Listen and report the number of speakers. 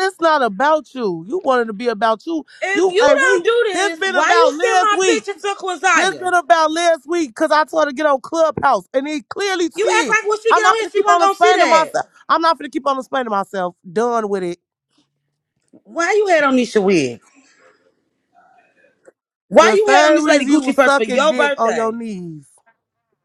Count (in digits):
2